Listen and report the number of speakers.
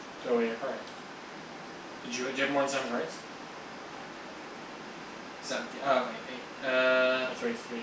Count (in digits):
2